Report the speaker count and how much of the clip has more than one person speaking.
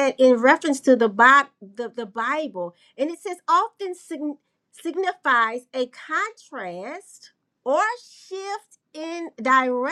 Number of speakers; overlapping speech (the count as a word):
one, no overlap